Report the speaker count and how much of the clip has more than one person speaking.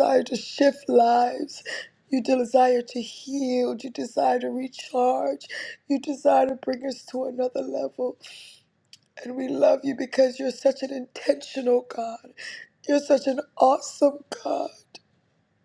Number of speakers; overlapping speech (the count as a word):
one, no overlap